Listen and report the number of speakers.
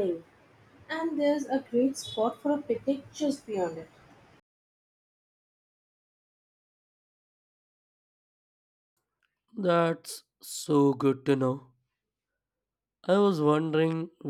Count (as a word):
two